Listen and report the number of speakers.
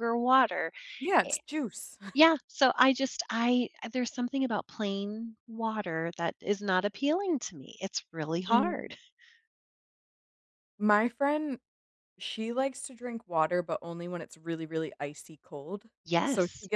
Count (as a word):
two